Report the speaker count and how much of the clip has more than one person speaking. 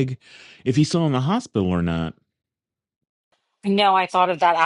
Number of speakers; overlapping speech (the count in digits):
2, no overlap